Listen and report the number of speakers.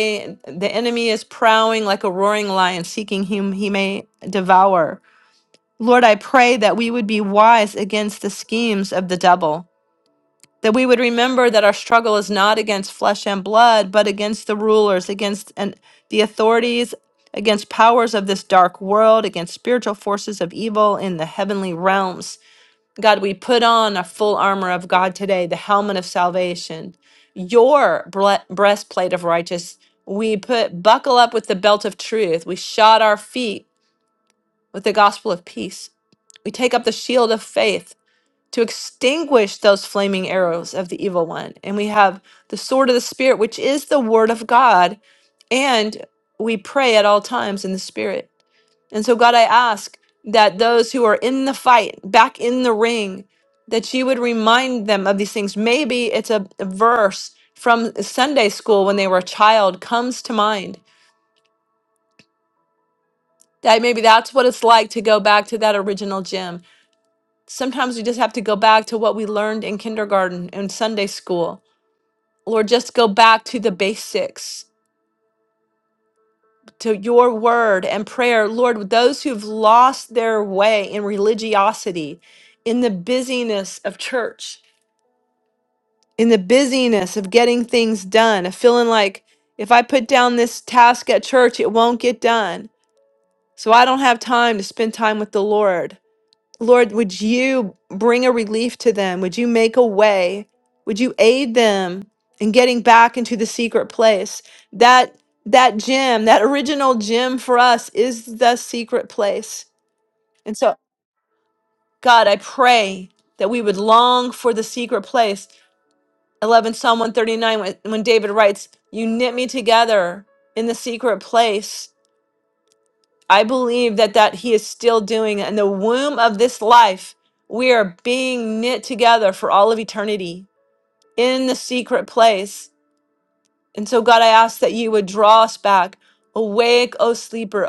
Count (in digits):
1